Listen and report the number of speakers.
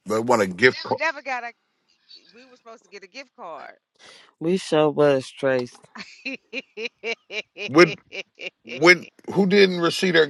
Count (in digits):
3